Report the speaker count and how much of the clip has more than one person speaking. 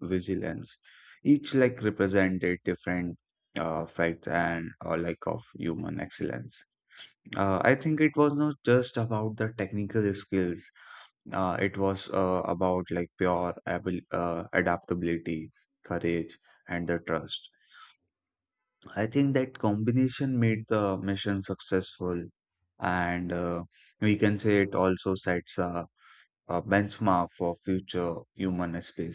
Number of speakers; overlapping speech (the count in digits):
1, no overlap